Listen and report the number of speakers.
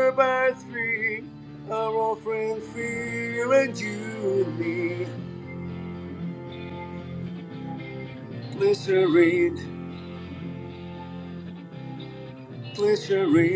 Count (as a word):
one